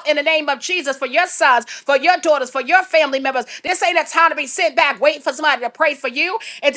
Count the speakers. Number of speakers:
1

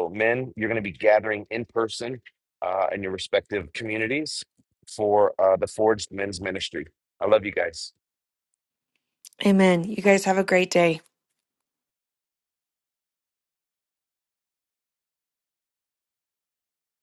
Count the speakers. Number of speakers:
2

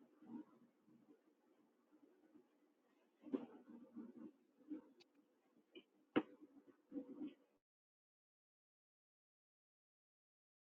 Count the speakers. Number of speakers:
0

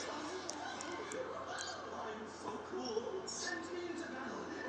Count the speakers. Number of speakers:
0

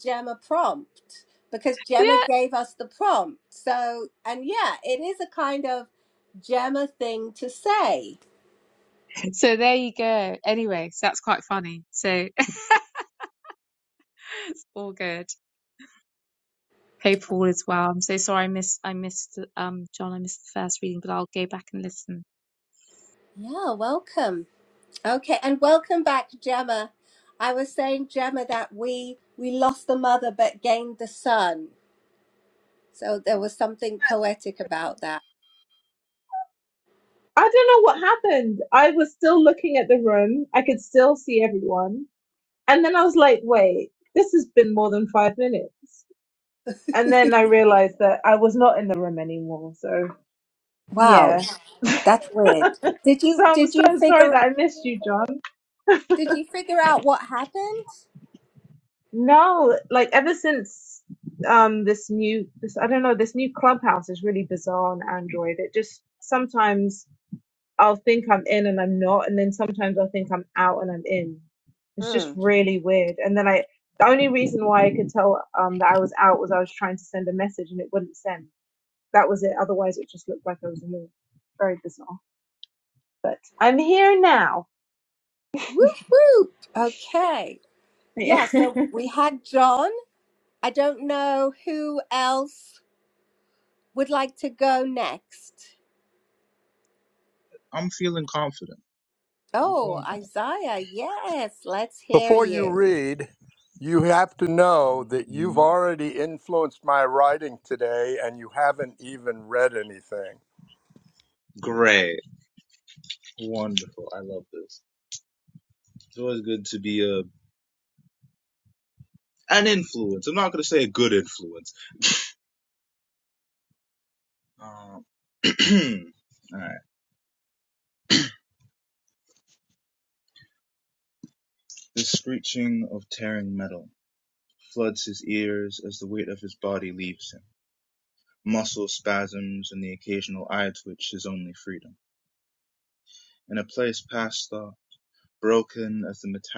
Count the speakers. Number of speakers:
5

